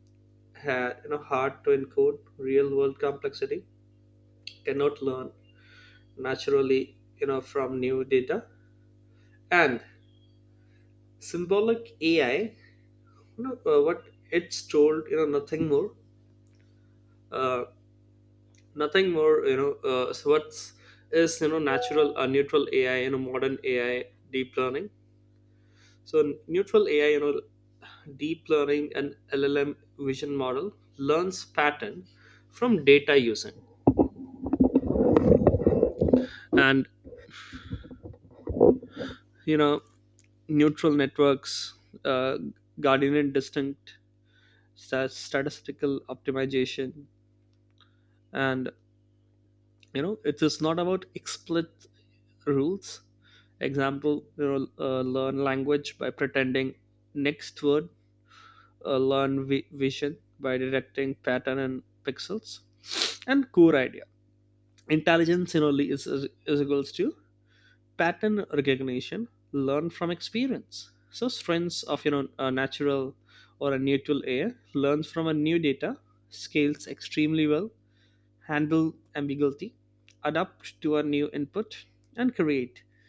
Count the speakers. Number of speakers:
one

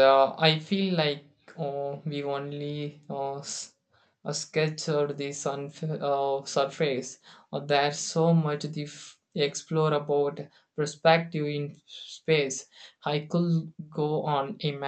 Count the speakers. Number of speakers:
one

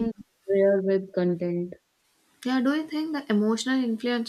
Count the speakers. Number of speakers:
two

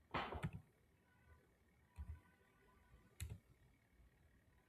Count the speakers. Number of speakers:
zero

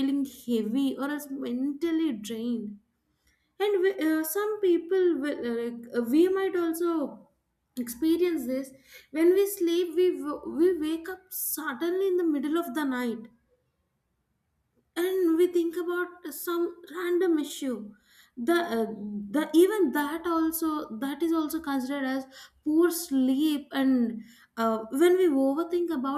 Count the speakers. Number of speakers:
one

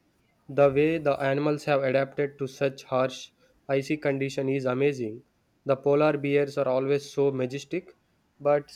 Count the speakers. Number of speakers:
one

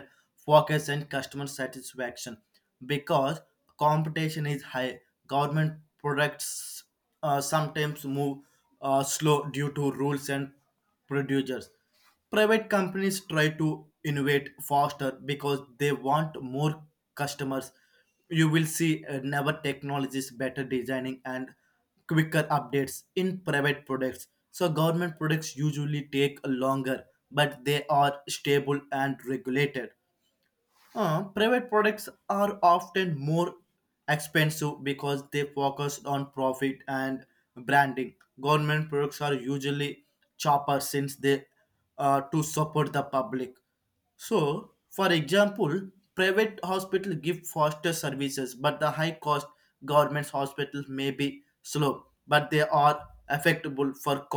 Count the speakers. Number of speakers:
one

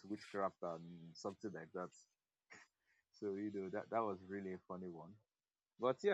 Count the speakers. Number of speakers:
one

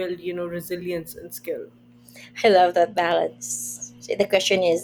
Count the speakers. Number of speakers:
two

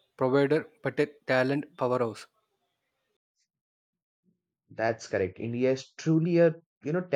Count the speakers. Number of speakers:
two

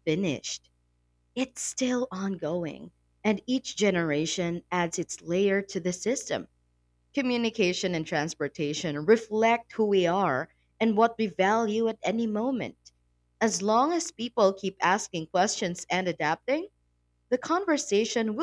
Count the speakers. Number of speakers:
one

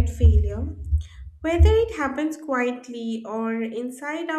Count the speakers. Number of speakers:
one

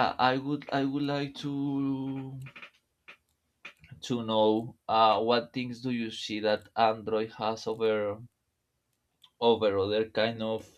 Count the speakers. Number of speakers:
one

